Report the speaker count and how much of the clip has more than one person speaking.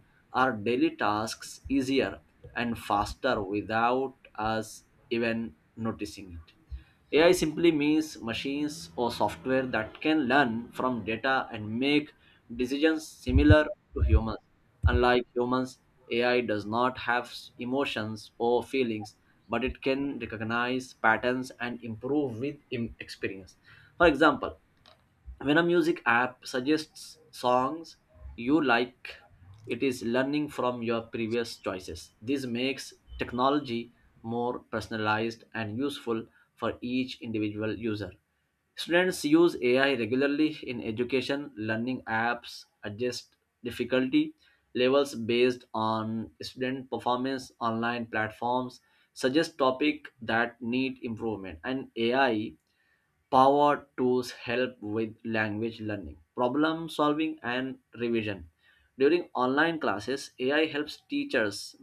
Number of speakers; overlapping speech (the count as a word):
one, no overlap